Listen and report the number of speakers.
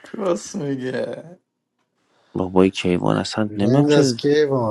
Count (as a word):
three